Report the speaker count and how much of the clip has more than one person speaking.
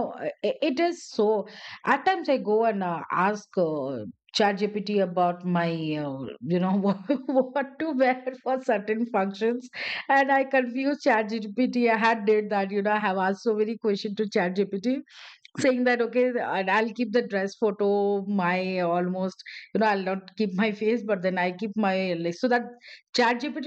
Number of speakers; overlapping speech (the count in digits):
1, no overlap